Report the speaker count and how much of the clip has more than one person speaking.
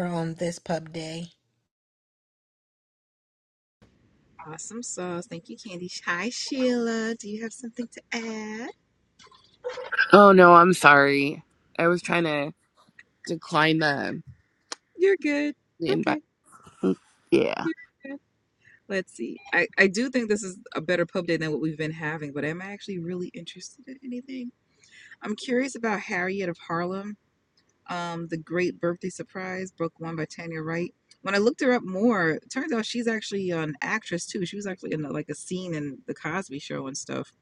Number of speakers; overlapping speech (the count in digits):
3, about 1%